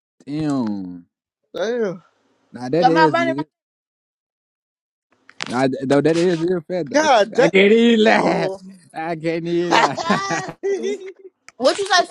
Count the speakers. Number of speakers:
three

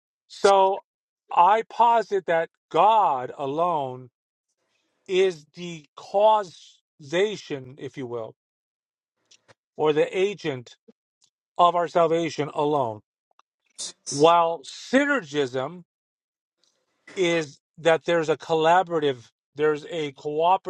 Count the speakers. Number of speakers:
one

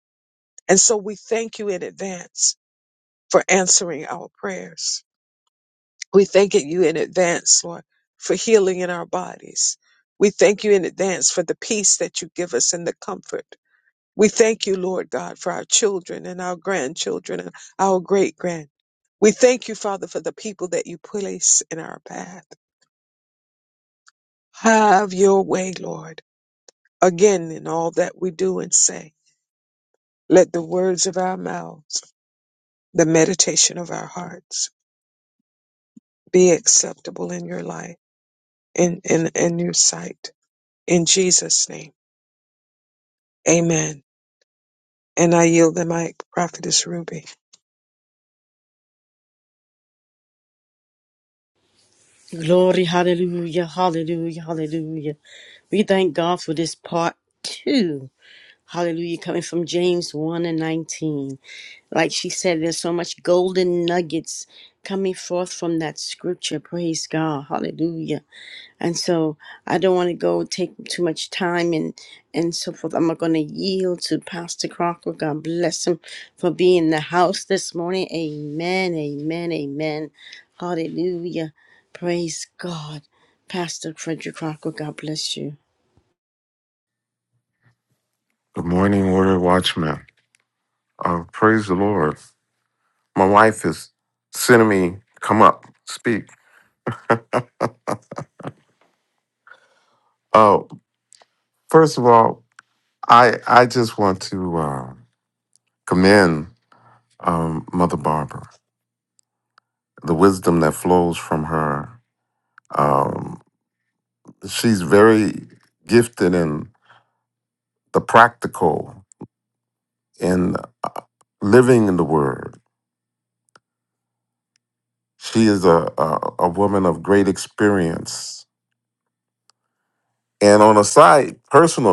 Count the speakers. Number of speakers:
three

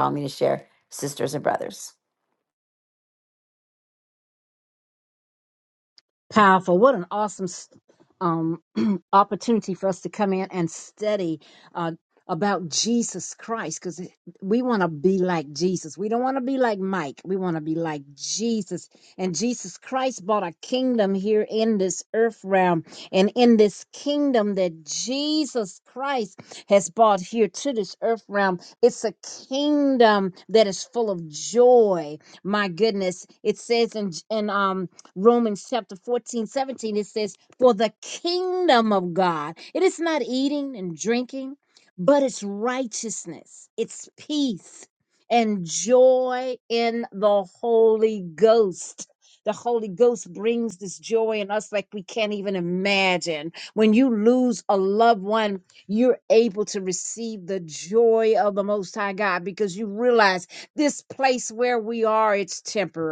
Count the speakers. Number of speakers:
two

